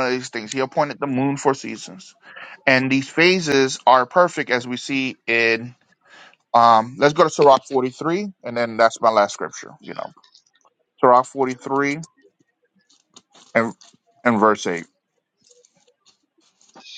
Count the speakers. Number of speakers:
1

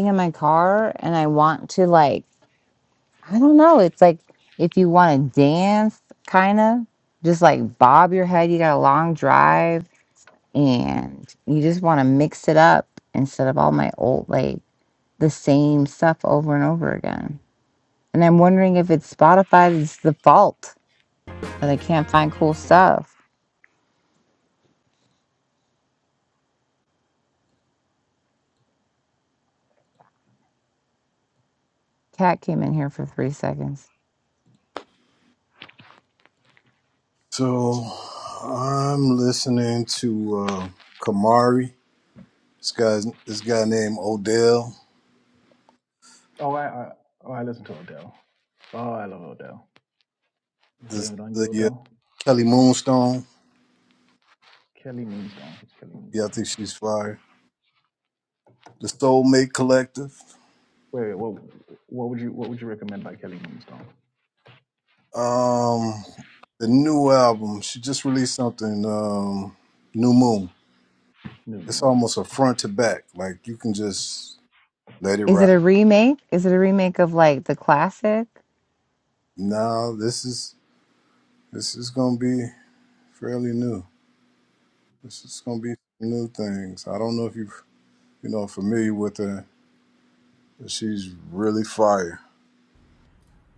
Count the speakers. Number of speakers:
3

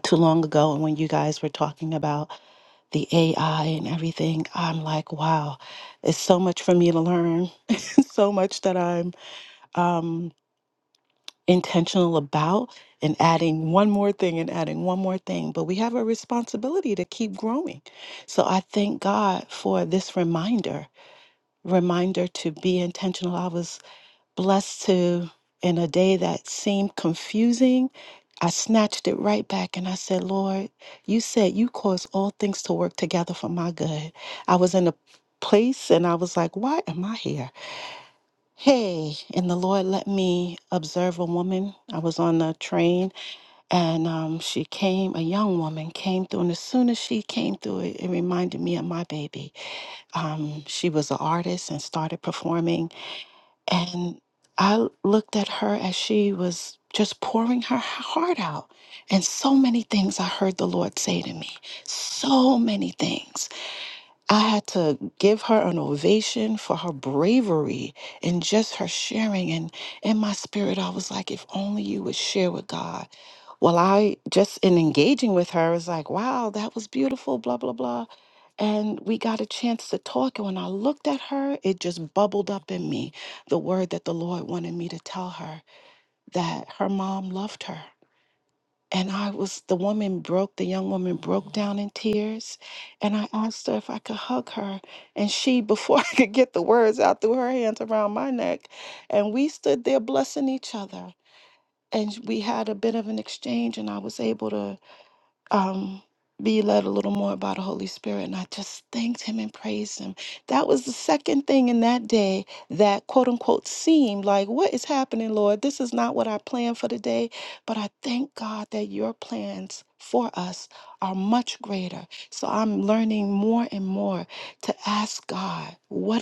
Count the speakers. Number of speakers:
1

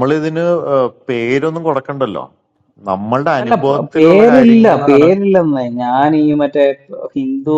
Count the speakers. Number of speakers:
2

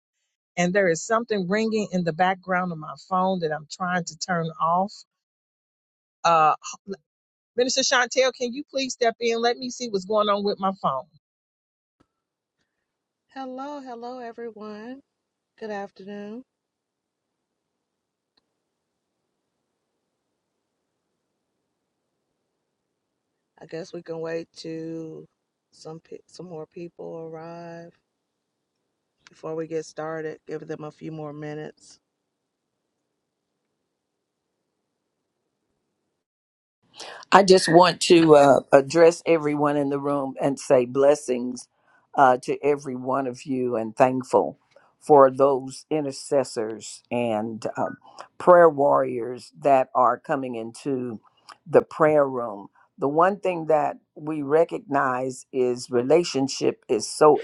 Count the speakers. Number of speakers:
3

